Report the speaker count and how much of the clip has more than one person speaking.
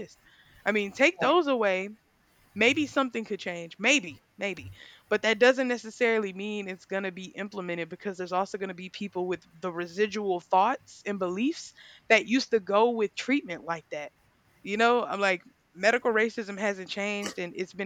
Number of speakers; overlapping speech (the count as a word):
one, no overlap